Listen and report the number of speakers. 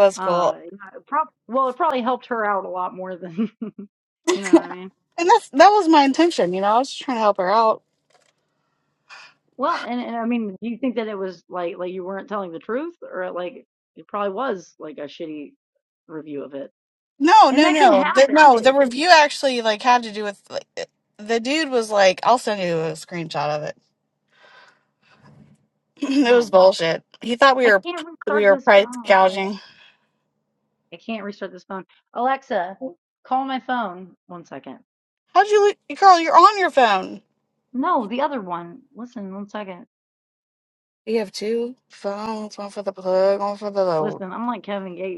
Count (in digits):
2